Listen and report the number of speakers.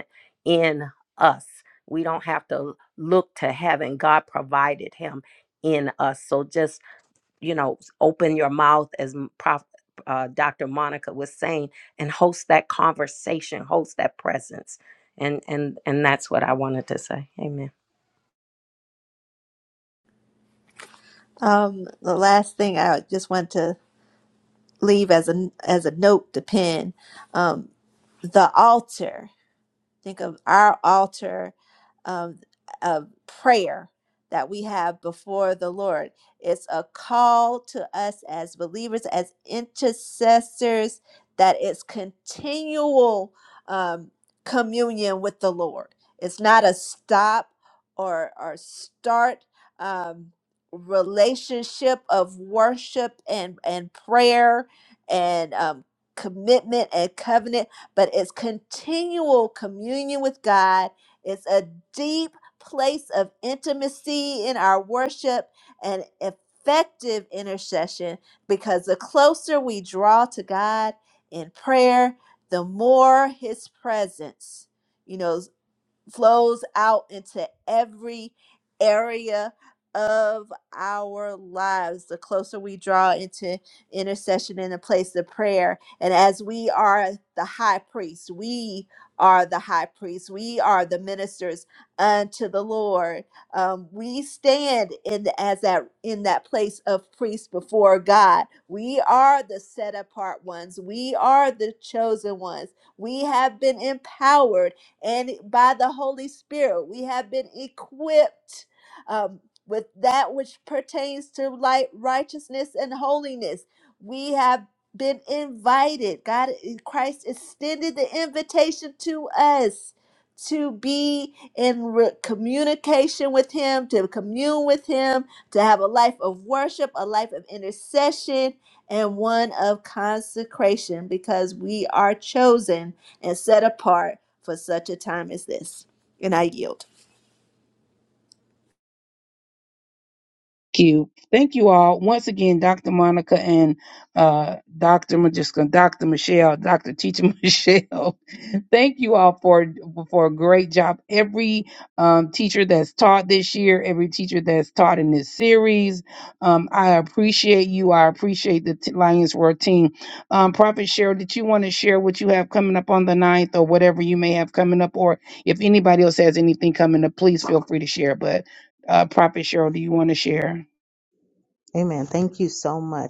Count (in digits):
4